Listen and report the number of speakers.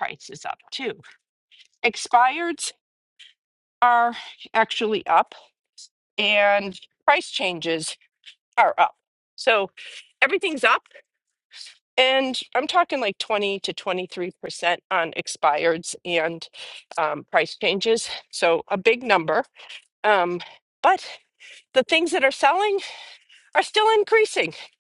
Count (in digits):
1